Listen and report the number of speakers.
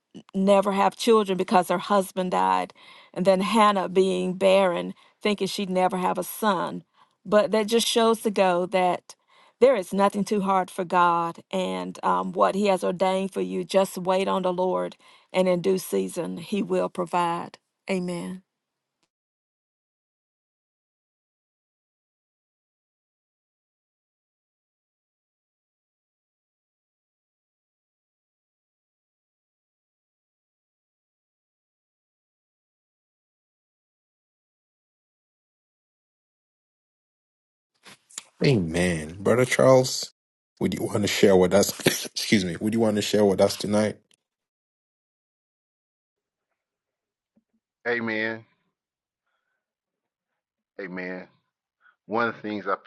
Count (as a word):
three